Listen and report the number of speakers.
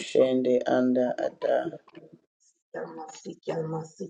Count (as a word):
two